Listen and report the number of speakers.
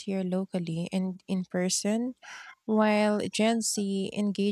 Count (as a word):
one